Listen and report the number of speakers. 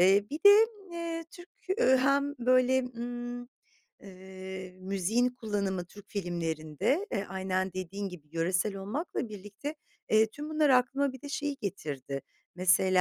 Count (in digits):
1